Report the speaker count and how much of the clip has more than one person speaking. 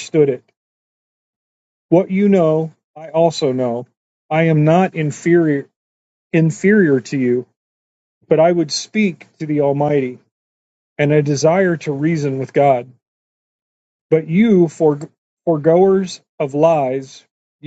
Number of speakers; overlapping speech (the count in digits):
1, no overlap